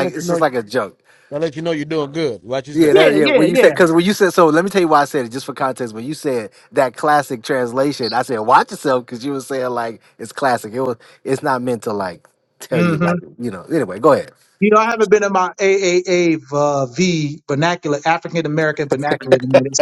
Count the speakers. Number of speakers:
3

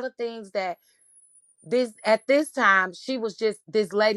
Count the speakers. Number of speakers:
1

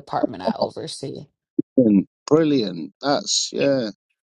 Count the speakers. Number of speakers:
2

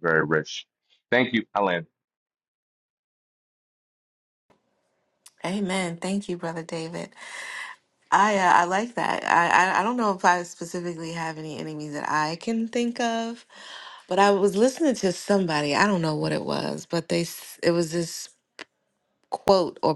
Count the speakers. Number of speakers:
2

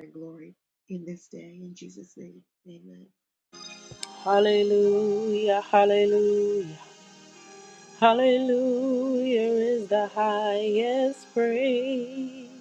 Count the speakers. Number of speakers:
2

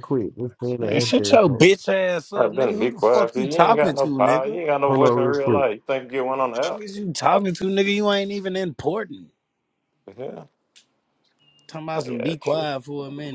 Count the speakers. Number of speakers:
3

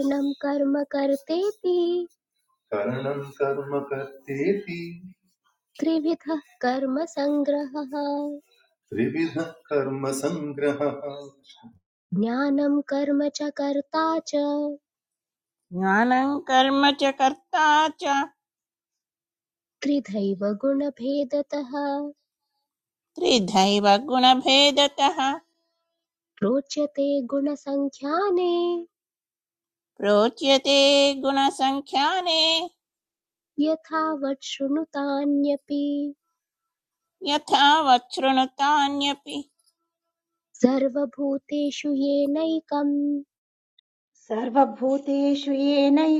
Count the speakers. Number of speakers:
4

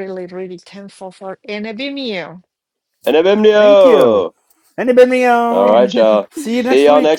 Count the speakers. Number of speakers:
3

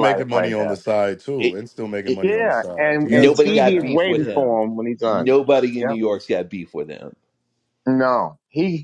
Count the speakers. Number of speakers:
3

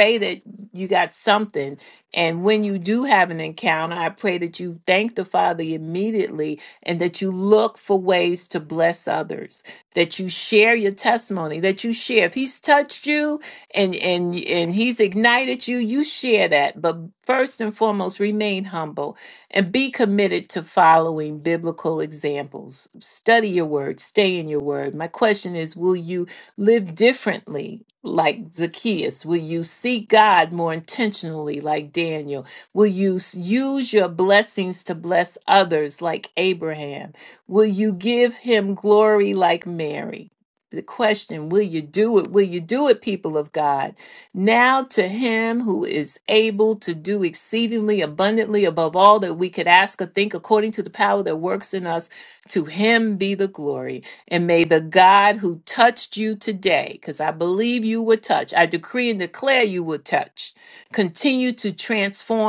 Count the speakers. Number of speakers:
1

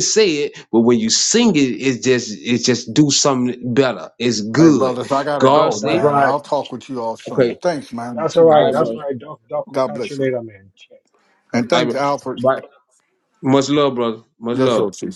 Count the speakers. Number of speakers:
3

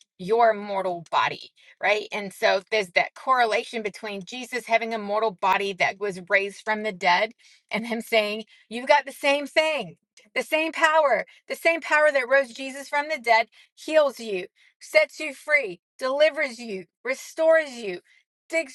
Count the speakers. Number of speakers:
1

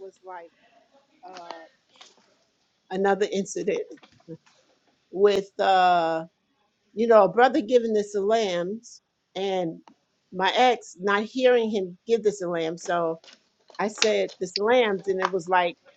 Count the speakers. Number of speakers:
1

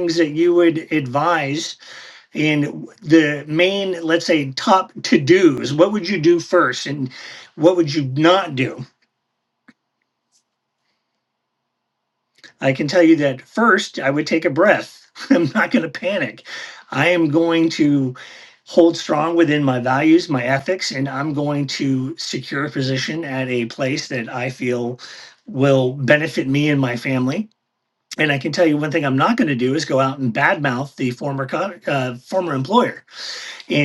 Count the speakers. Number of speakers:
1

